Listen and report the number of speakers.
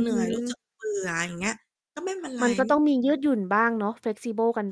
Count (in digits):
2